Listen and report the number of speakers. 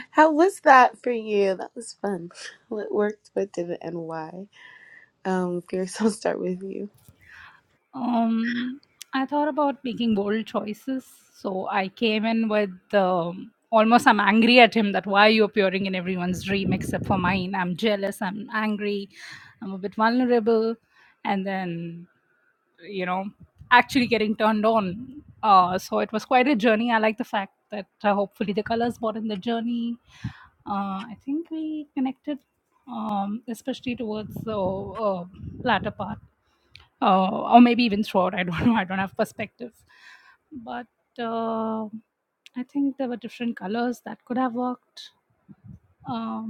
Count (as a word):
two